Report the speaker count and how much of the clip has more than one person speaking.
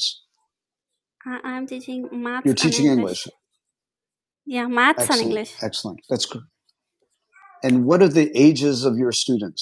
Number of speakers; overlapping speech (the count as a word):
two, about 16%